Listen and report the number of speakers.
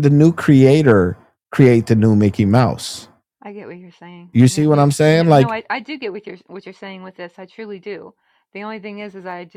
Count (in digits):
2